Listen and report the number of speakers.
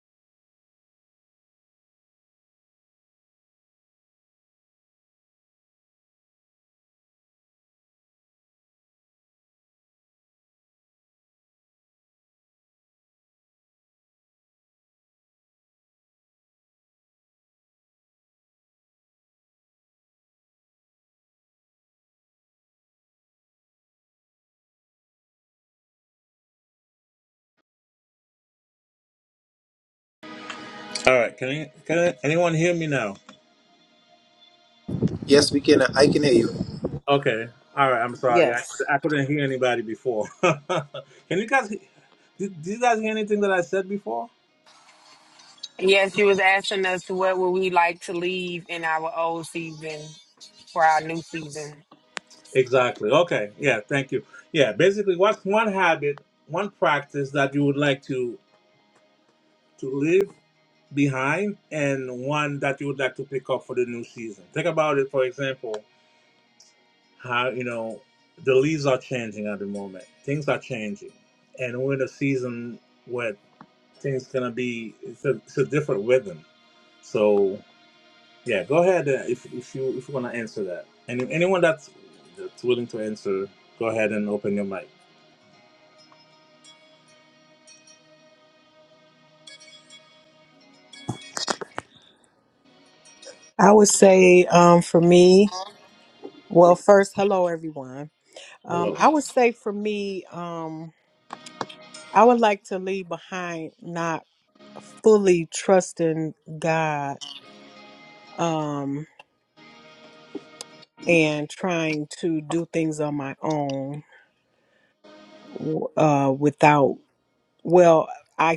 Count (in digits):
4